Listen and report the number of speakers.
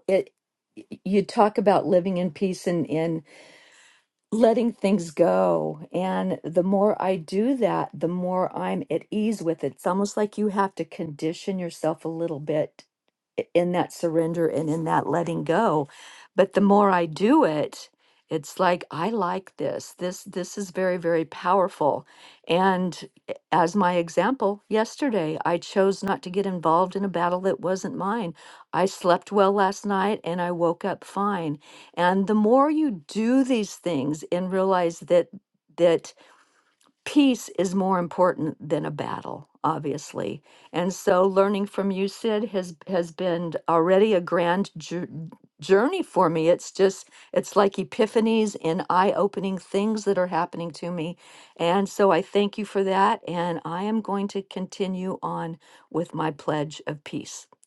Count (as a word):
one